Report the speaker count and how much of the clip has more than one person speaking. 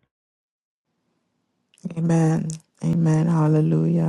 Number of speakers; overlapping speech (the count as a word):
one, no overlap